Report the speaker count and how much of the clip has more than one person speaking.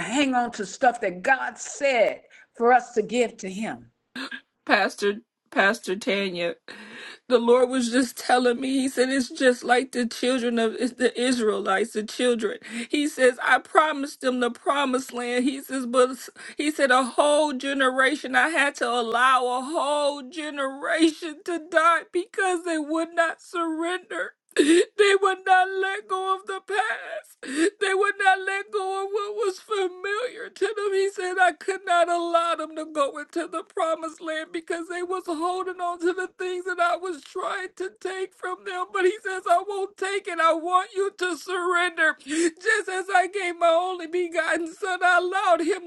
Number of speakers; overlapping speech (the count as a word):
two, no overlap